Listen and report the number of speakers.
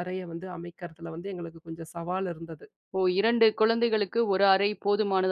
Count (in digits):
2